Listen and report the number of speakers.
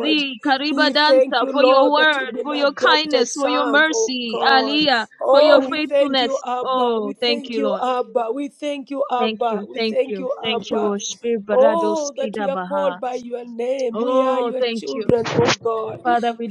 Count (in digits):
2